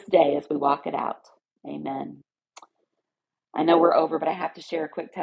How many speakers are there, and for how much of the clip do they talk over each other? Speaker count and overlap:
one, no overlap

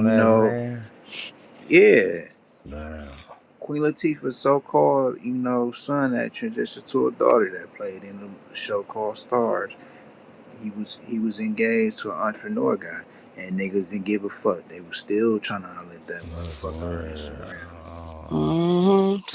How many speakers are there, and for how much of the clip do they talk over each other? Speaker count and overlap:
three, about 12%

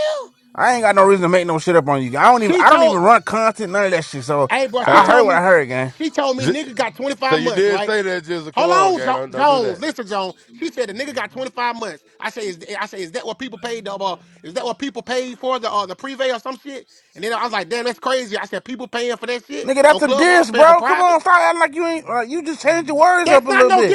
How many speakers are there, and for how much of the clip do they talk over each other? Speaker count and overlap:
three, about 22%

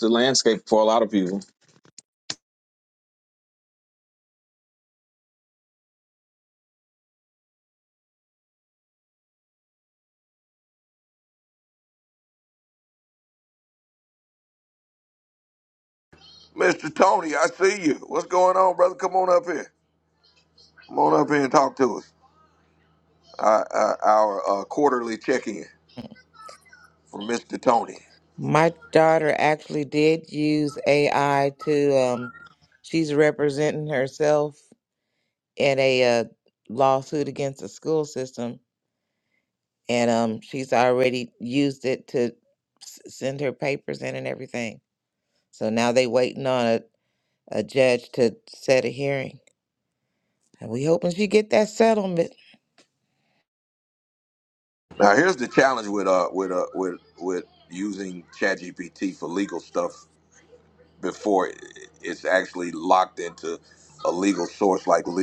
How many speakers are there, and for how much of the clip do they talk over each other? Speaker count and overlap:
three, no overlap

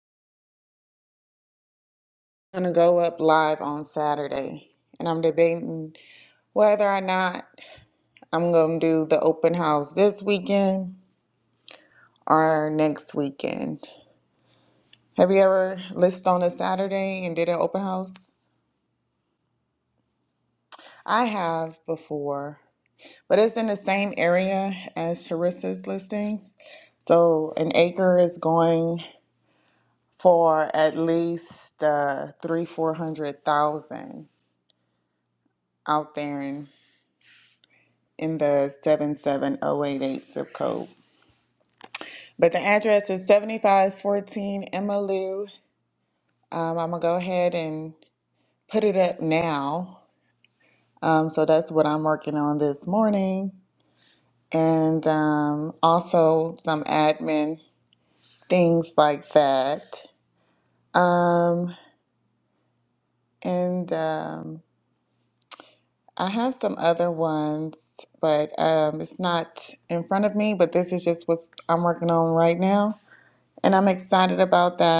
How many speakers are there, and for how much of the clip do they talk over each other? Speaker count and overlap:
one, no overlap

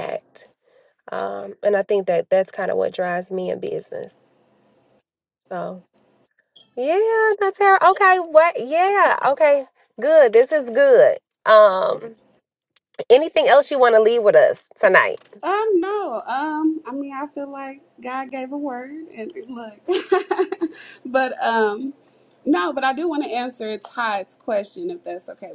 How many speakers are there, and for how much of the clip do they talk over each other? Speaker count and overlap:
two, no overlap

